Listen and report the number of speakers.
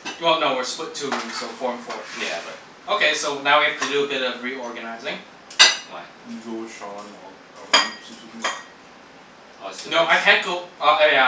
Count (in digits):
3